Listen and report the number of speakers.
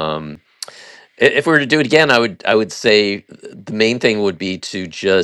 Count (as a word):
one